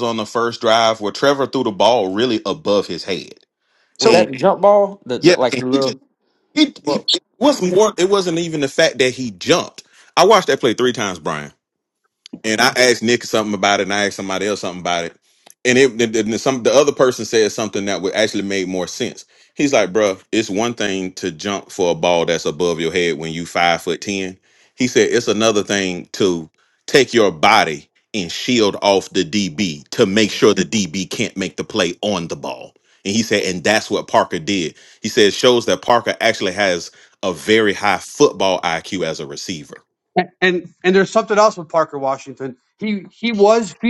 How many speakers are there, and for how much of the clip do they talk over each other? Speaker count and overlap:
3, about 3%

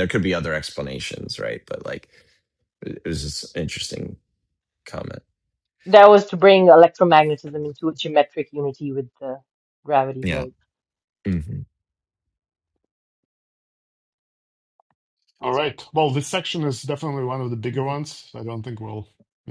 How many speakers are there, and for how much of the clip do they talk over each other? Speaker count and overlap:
3, about 1%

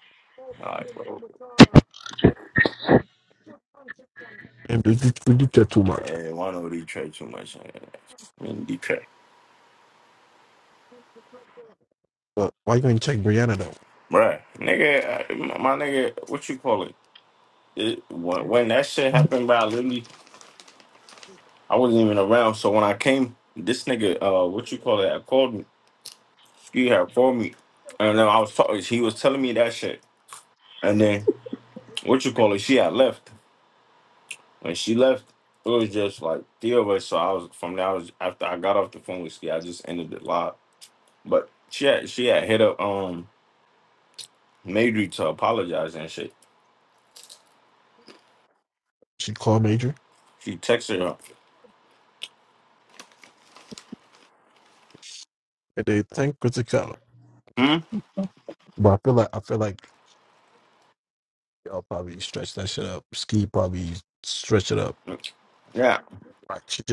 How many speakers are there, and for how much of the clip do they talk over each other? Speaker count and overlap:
2, under 1%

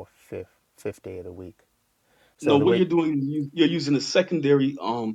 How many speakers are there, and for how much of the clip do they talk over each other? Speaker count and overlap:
2, about 7%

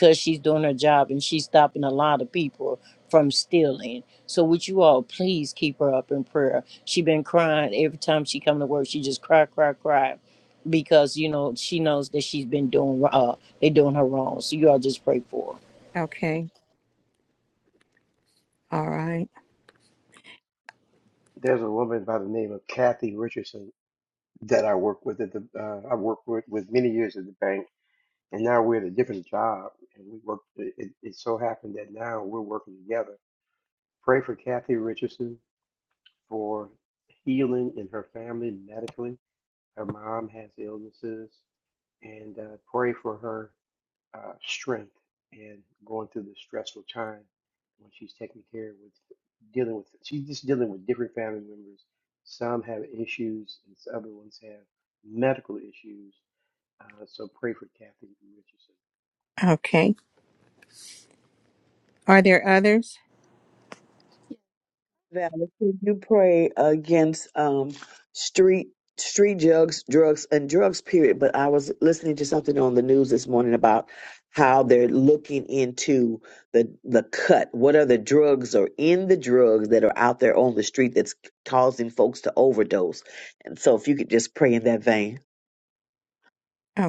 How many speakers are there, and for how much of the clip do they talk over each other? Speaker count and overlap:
4, no overlap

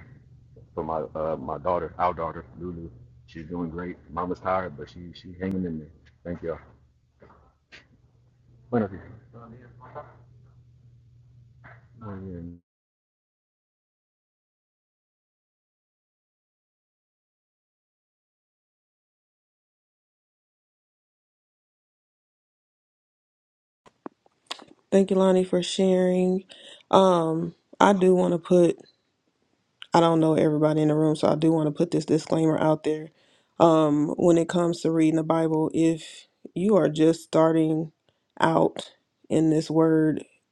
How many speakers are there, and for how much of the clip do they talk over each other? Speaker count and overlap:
2, no overlap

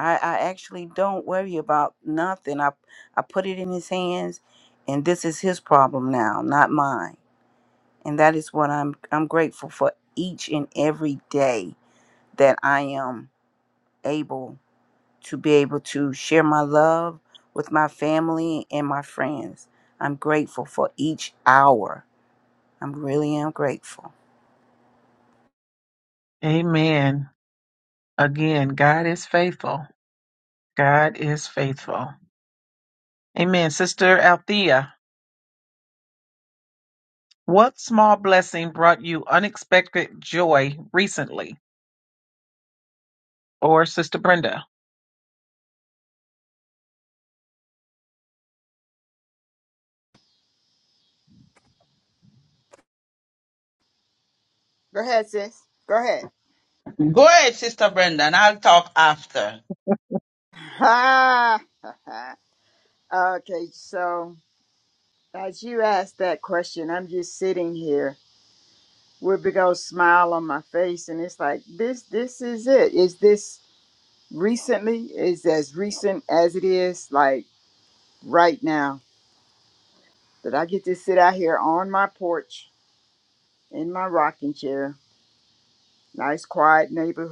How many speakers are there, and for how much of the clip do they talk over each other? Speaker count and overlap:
4, no overlap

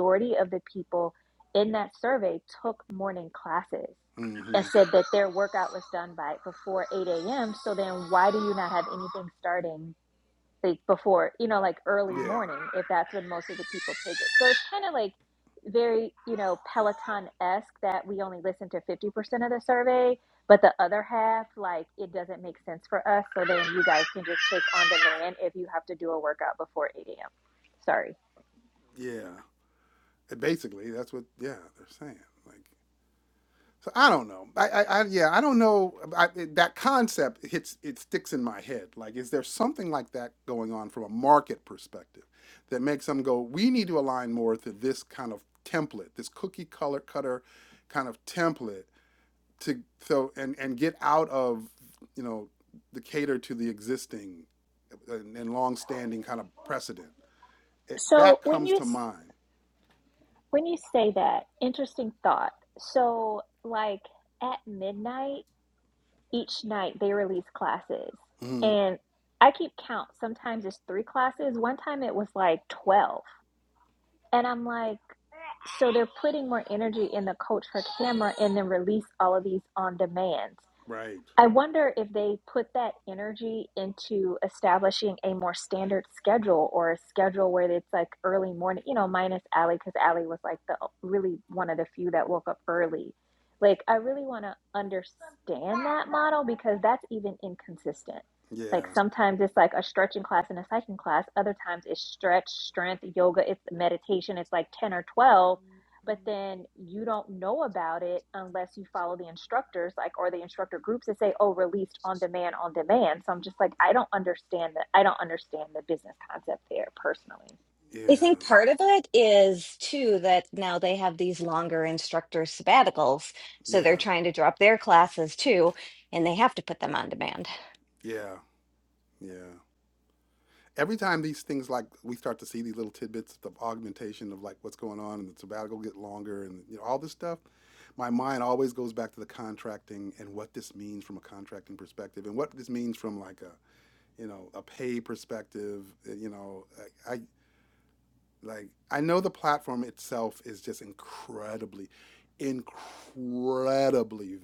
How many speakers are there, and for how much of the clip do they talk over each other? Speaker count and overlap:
3, about 1%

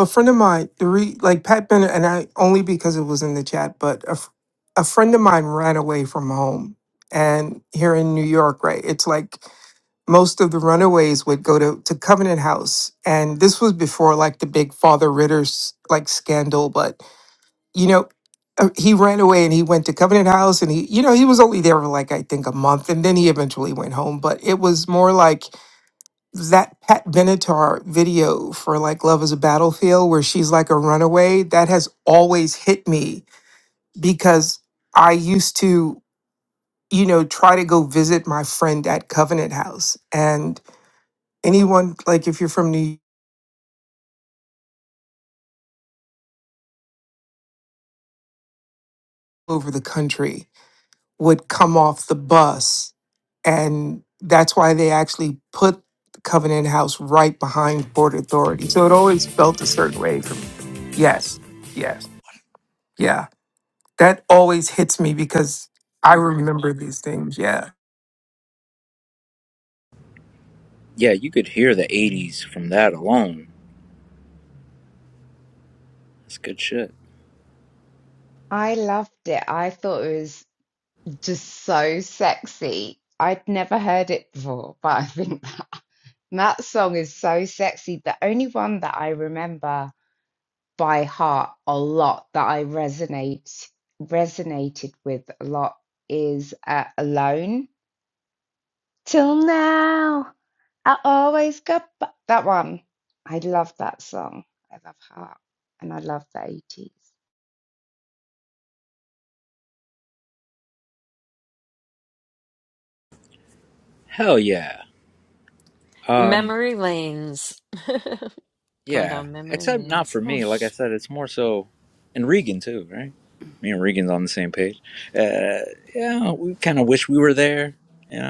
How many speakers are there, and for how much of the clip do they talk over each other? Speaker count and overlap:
4, about 1%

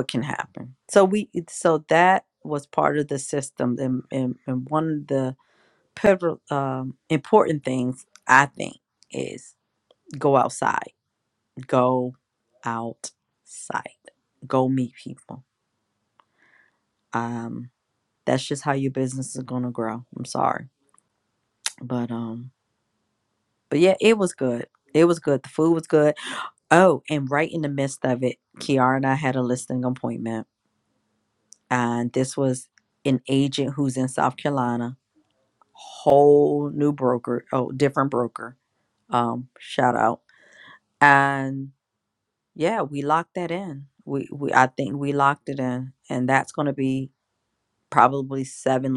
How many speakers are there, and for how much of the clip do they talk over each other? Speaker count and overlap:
1, no overlap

